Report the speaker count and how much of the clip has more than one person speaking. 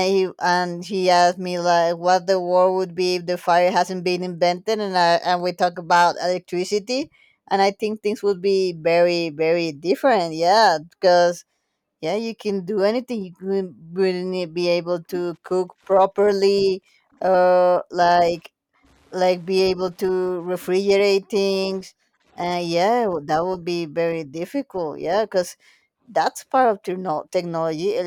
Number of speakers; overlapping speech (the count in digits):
1, no overlap